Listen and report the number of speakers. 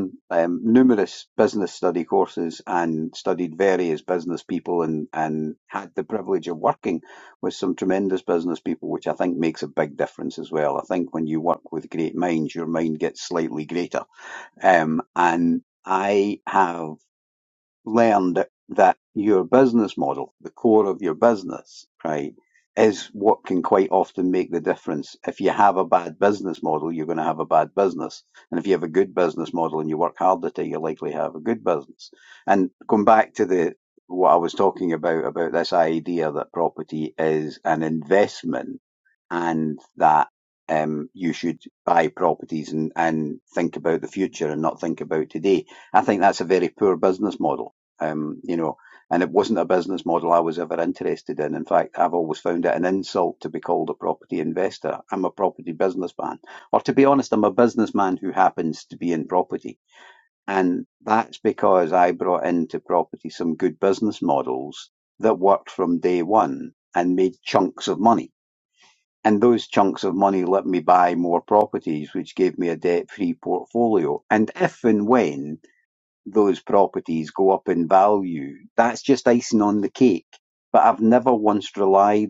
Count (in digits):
1